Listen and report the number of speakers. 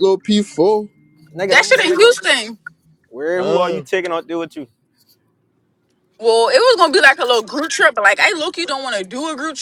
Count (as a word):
three